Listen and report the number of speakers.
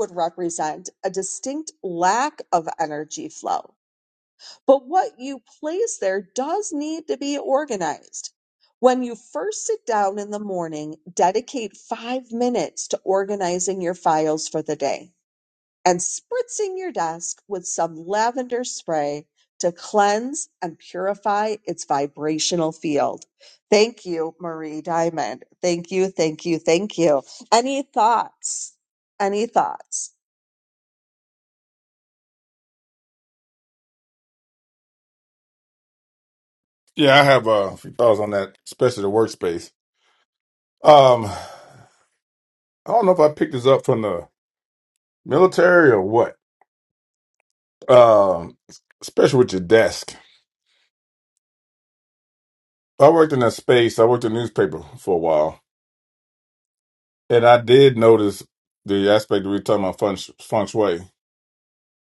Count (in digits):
2